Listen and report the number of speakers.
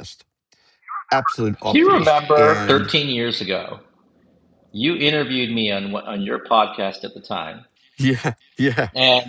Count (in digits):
2